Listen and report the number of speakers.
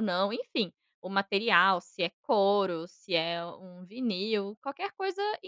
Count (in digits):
1